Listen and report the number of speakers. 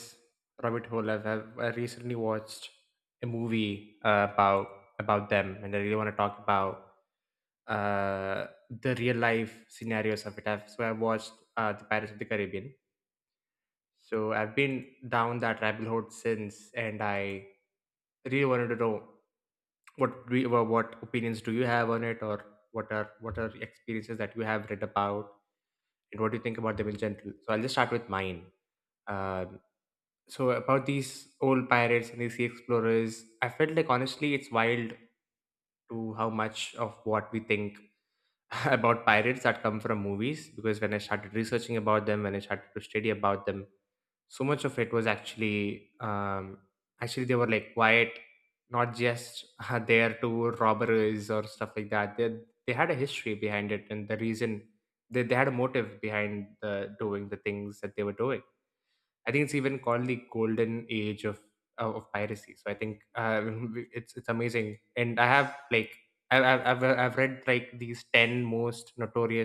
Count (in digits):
1